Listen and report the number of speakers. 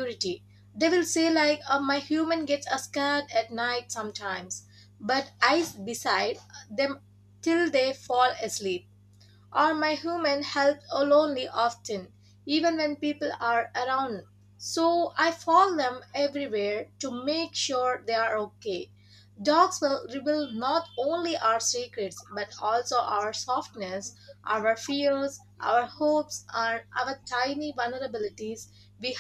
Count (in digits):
1